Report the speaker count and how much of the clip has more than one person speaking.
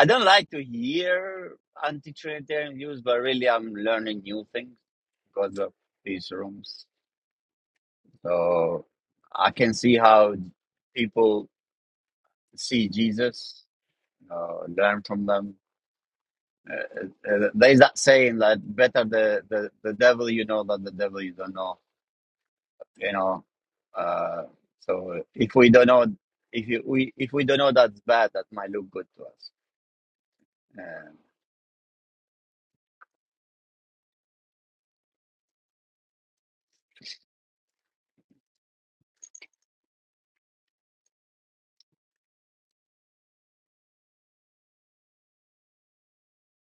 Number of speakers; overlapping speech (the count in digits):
1, no overlap